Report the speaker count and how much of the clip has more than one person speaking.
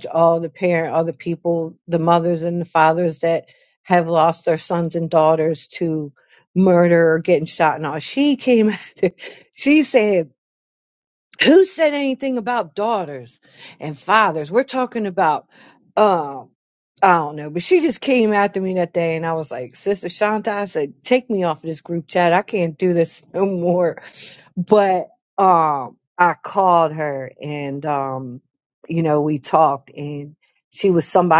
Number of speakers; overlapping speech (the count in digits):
1, no overlap